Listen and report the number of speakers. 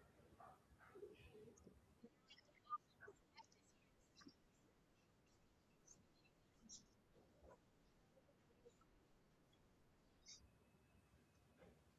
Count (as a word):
zero